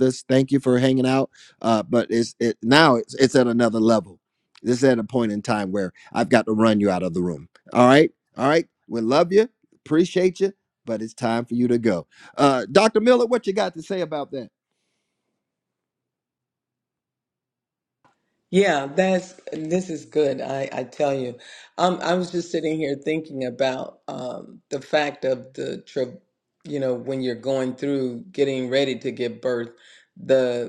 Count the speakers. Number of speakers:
two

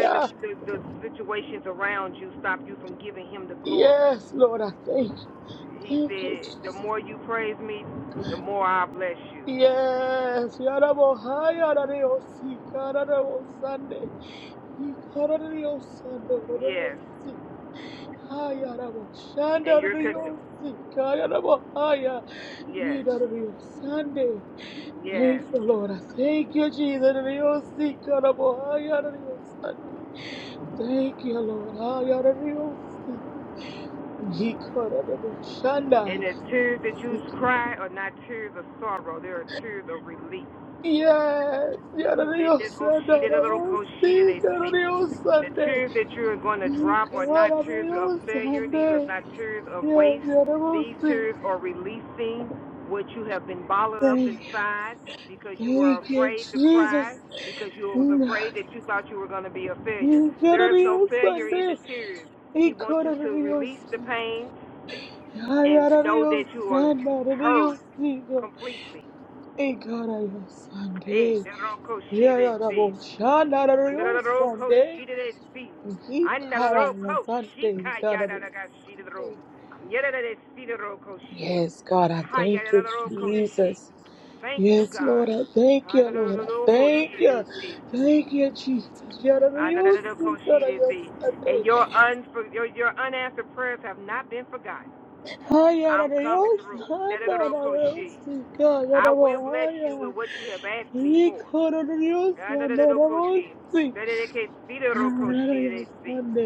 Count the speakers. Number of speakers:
two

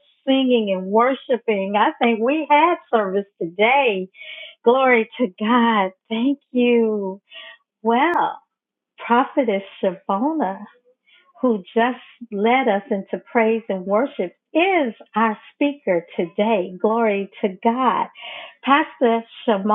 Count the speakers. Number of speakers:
one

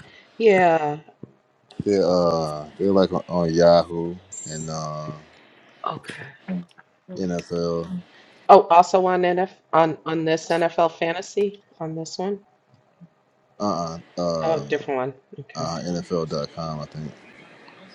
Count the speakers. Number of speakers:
two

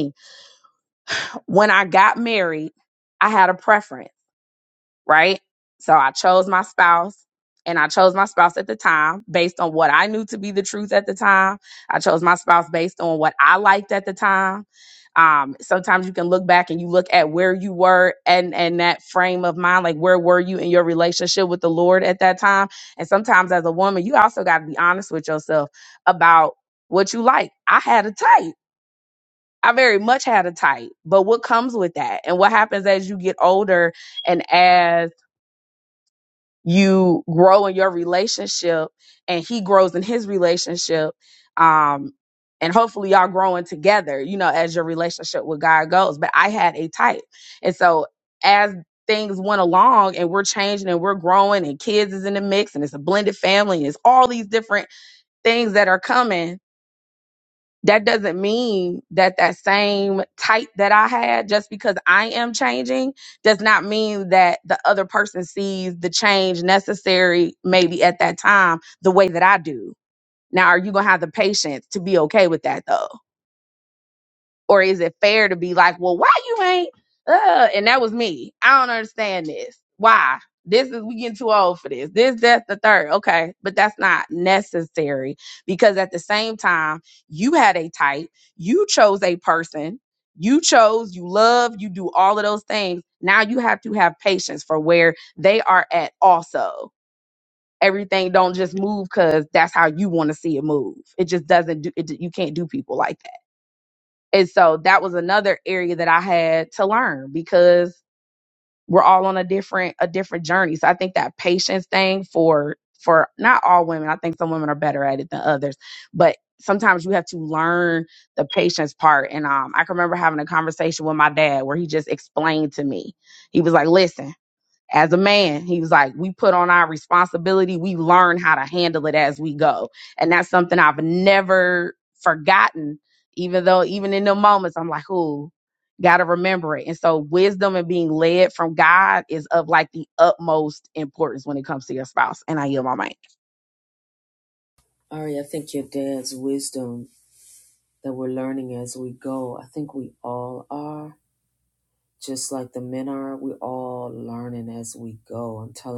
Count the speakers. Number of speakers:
two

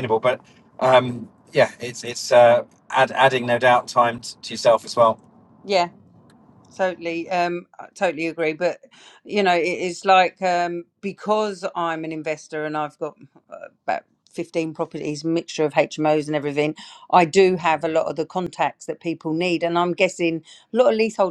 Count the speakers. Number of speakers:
two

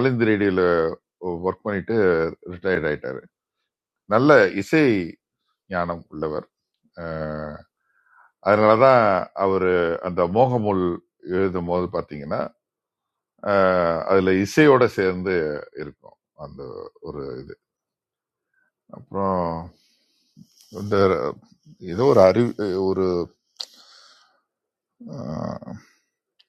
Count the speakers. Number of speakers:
one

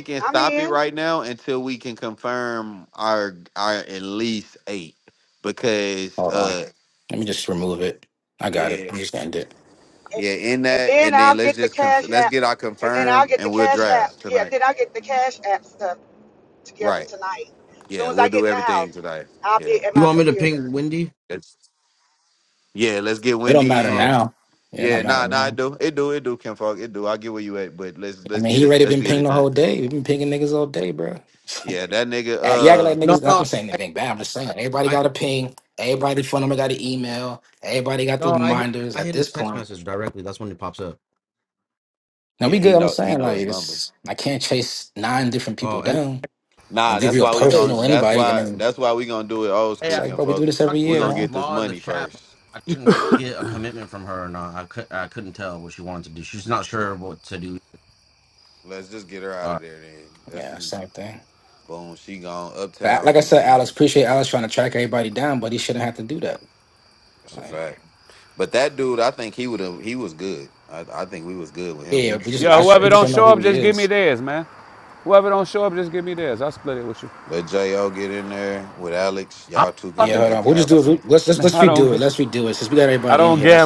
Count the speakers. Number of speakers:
five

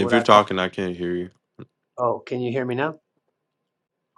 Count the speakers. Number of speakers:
two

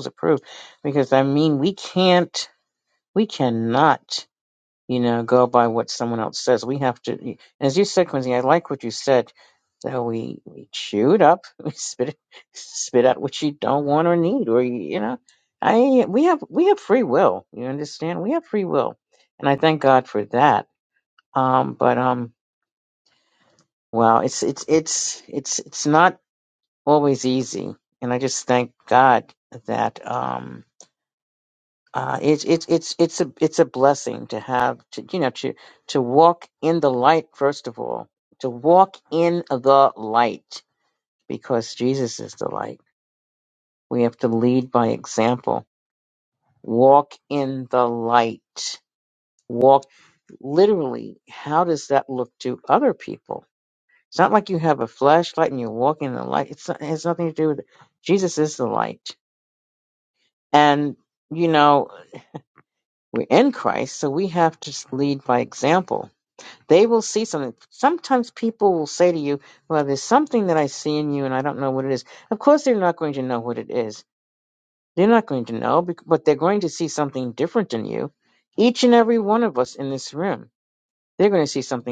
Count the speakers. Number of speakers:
one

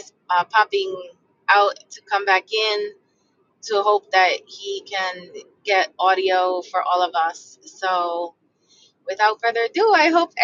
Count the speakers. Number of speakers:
one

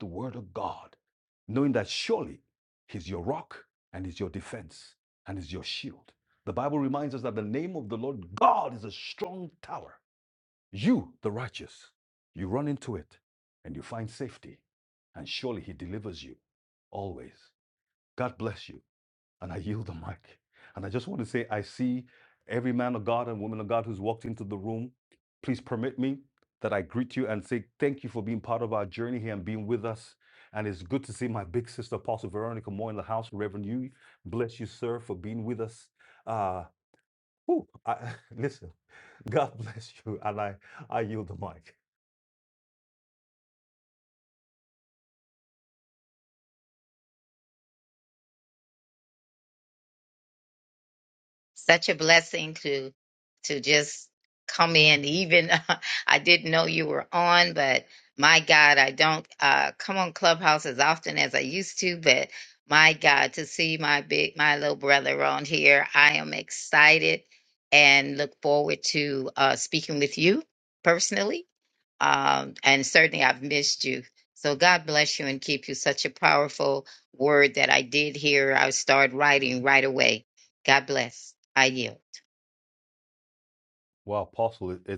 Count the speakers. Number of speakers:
two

